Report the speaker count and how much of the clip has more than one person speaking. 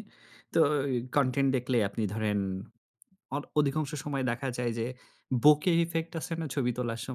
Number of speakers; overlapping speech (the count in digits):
1, no overlap